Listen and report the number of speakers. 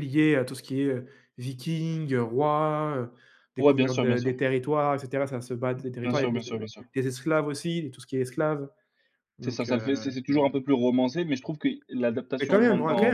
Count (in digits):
2